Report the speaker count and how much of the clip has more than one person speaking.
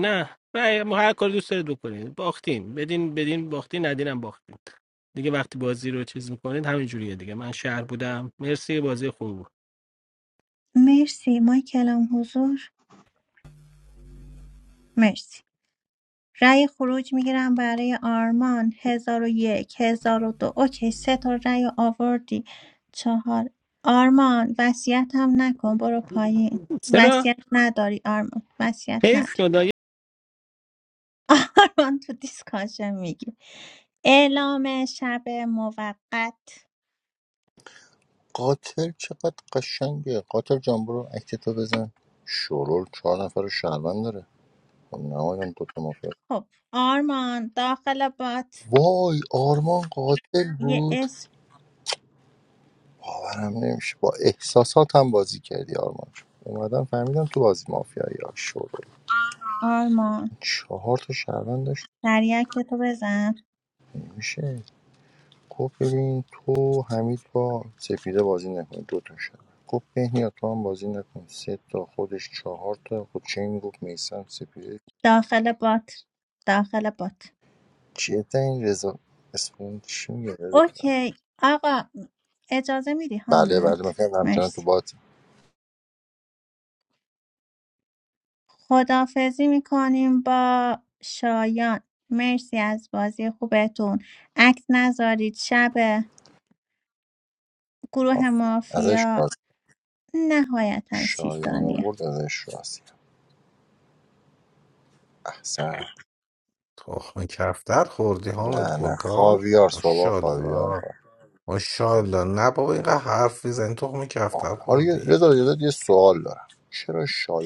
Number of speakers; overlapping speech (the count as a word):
four, about 6%